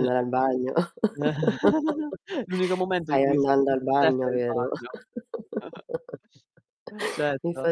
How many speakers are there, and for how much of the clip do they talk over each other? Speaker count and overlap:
2, about 18%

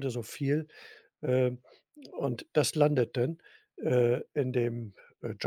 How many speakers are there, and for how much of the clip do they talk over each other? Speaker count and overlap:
1, no overlap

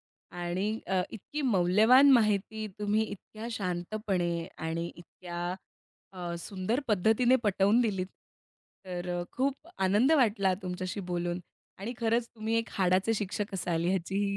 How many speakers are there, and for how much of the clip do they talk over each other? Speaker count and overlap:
1, no overlap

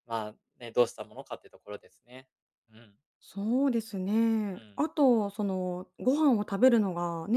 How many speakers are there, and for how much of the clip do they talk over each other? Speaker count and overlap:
2, about 1%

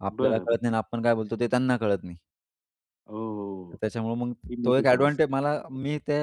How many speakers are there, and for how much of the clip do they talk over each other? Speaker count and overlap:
2, about 19%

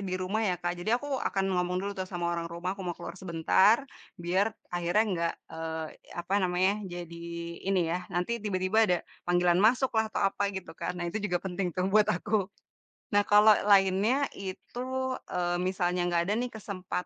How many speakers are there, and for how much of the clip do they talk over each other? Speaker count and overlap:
1, no overlap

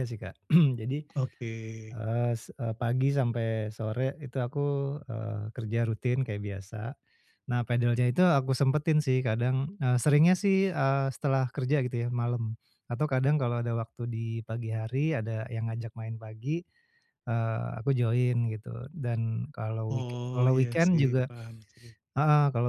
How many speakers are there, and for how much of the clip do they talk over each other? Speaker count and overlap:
2, about 6%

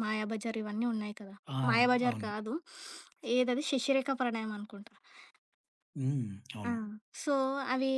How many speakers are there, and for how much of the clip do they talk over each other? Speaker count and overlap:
2, about 7%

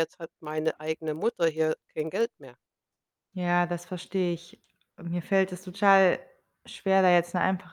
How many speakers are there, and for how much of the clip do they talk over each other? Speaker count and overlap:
2, no overlap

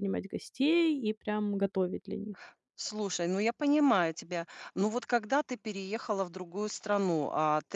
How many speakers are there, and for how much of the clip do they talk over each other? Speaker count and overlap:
2, no overlap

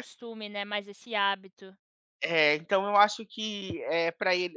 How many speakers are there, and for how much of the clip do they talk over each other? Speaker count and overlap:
2, about 1%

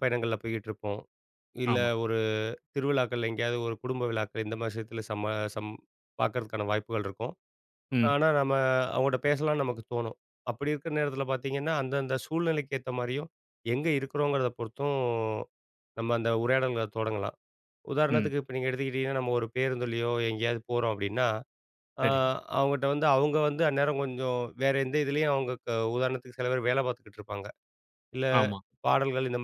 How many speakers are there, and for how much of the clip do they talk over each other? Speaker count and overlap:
2, about 2%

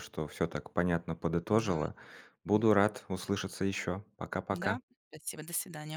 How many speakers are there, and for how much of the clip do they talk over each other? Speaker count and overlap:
2, about 10%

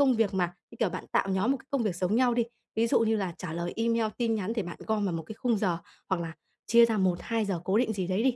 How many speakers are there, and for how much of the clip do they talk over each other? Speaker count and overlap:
1, no overlap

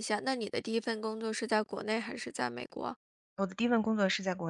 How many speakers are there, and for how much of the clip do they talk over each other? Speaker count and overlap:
2, no overlap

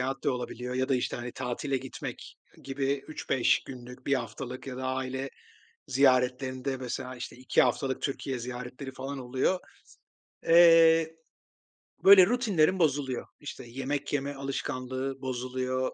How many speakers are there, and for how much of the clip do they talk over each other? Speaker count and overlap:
1, no overlap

